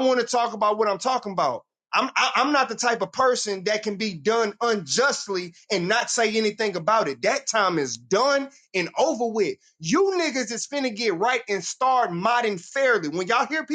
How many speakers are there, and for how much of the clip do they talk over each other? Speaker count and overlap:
one, no overlap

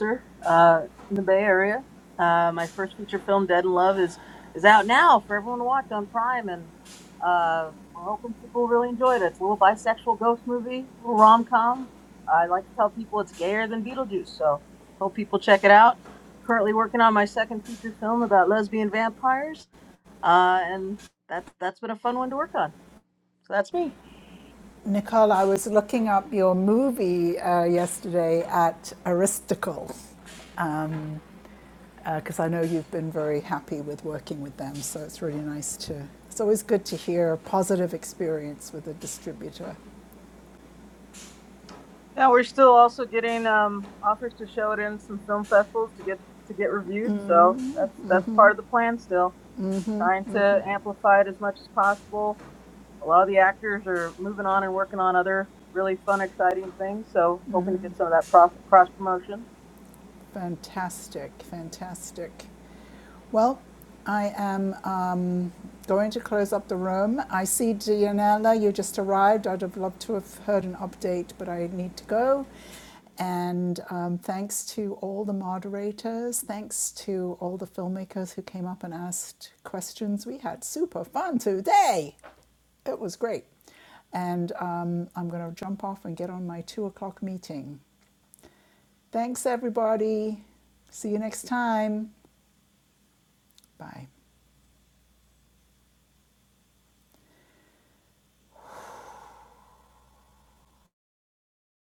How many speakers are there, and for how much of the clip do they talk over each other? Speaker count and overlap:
two, no overlap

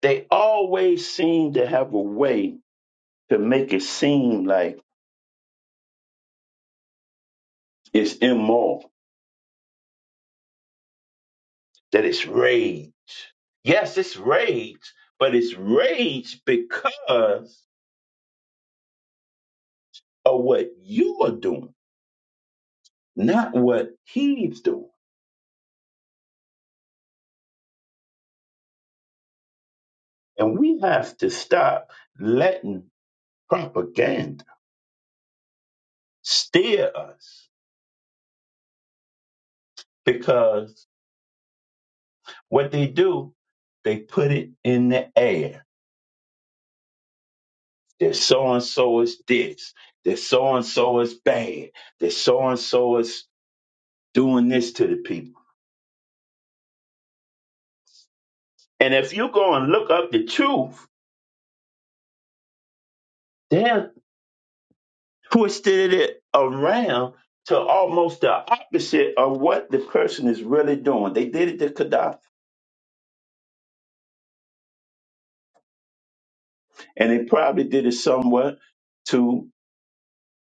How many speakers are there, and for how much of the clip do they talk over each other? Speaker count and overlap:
one, no overlap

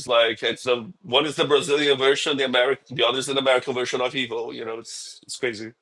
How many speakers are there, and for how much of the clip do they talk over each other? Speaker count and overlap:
one, no overlap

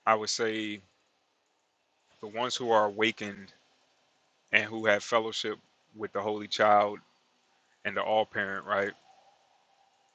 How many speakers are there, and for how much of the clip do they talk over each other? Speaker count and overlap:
one, no overlap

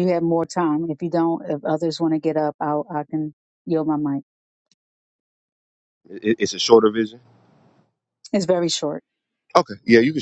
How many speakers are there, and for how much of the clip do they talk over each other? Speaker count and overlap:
two, no overlap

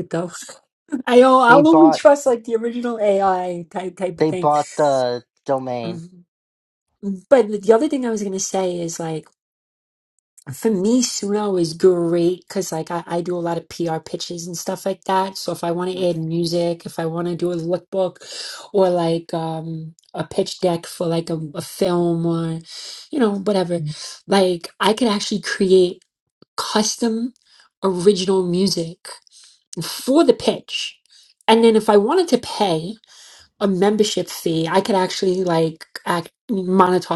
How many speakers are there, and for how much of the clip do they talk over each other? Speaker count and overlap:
two, about 3%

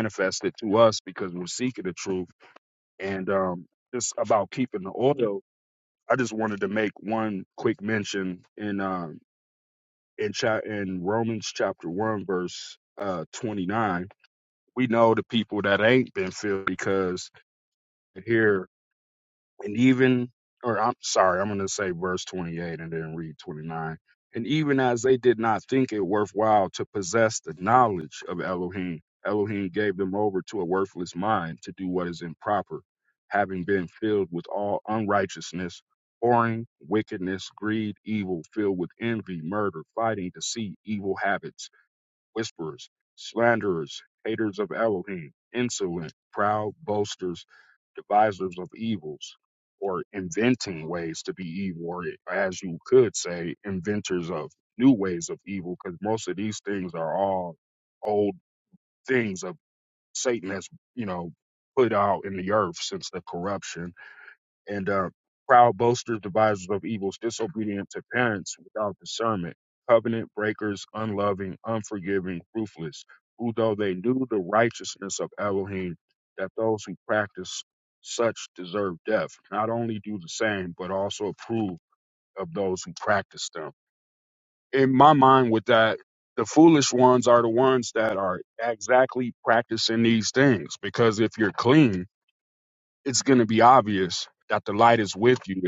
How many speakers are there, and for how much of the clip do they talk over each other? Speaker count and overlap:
one, no overlap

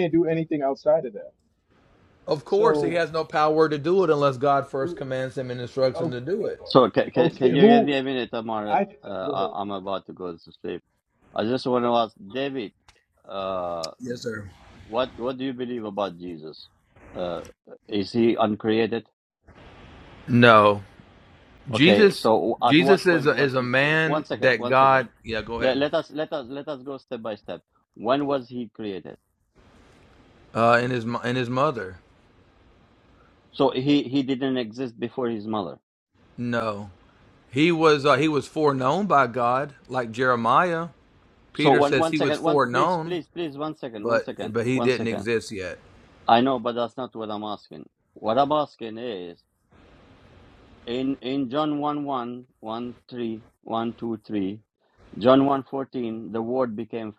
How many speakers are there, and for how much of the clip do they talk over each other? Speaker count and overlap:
three, about 14%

